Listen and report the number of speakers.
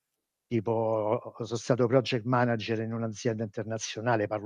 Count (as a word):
one